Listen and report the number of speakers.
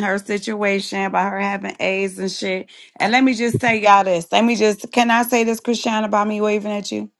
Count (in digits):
1